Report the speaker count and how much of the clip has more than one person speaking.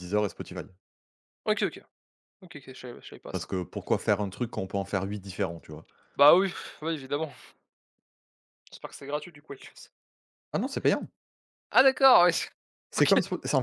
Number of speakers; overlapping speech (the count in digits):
2, about 1%